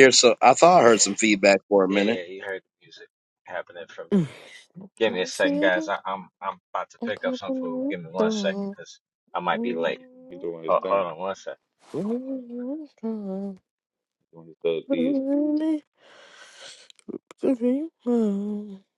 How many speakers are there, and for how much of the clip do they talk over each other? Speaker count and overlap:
4, about 20%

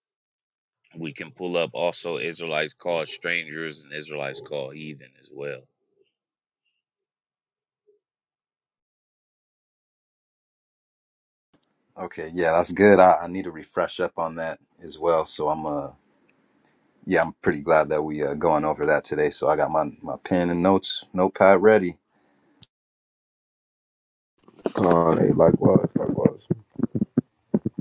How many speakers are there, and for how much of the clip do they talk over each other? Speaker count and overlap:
3, no overlap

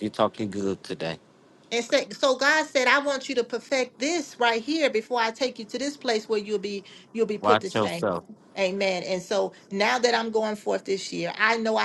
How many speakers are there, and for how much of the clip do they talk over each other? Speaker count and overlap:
2, about 6%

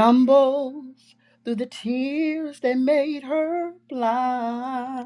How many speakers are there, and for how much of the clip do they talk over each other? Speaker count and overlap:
1, no overlap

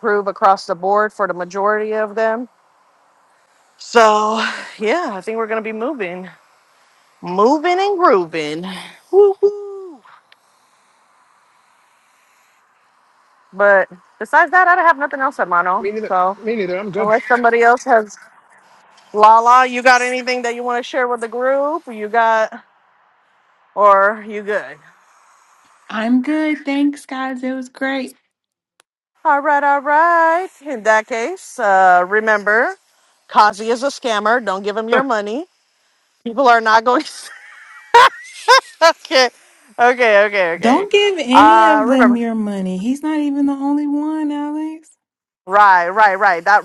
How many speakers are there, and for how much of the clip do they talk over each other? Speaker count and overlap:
3, about 4%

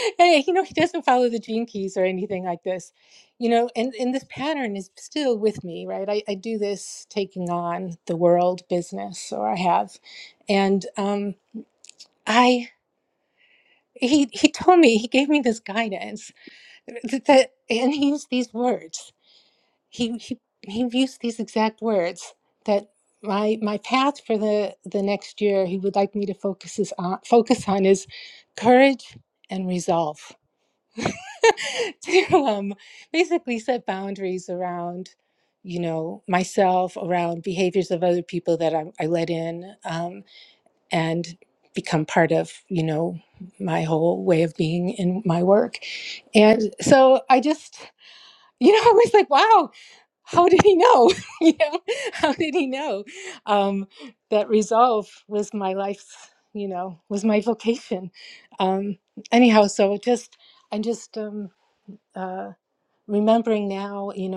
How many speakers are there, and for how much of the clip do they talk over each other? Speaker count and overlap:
1, no overlap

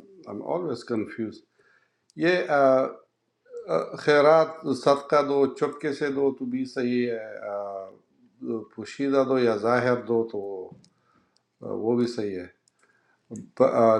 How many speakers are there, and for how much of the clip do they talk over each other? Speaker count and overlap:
1, no overlap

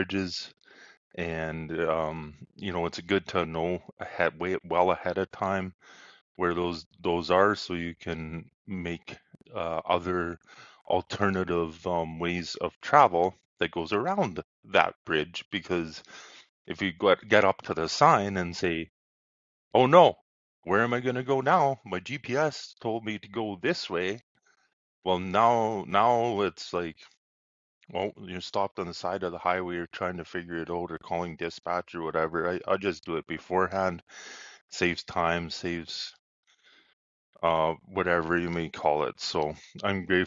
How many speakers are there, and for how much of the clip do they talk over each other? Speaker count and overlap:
1, no overlap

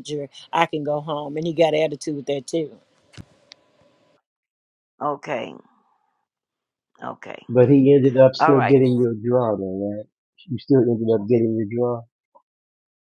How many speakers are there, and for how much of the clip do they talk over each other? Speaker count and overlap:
3, about 3%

